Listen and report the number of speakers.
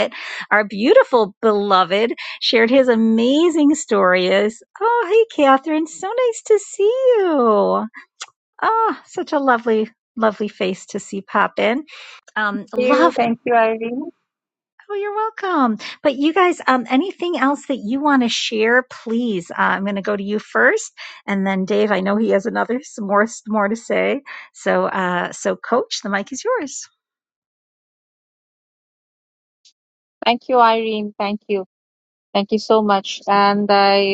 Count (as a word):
two